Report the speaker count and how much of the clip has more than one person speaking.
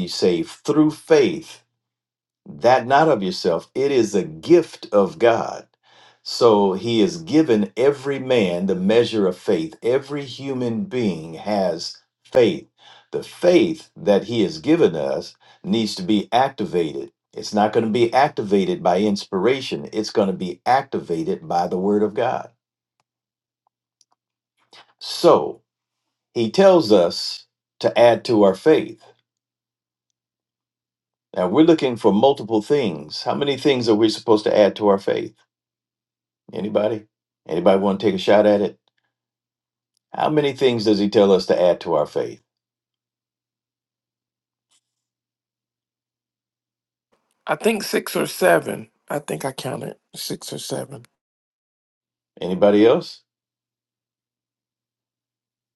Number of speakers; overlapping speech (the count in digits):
2, no overlap